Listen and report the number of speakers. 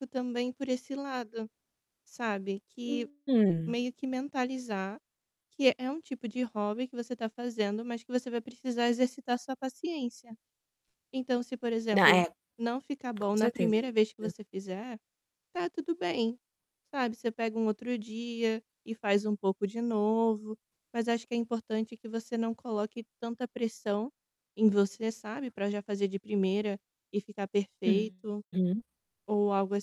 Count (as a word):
two